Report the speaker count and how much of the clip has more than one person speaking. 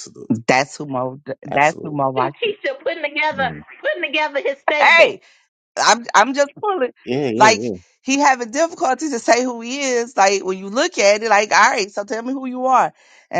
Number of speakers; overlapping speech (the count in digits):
3, about 10%